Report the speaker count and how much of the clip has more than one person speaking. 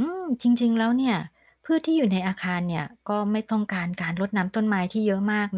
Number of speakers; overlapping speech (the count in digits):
1, no overlap